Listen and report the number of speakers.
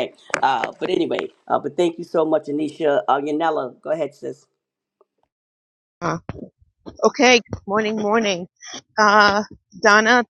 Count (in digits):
2